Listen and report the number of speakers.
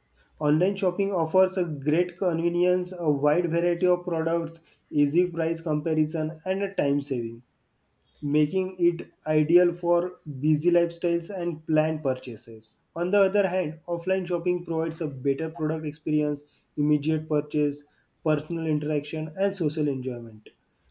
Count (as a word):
one